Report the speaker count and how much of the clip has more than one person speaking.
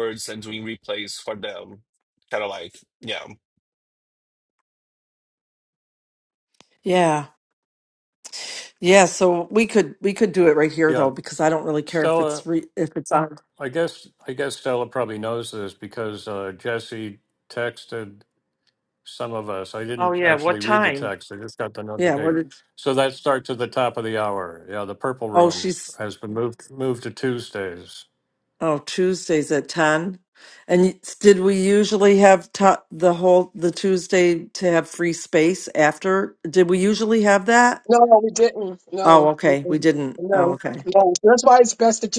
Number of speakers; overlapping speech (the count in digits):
4, about 10%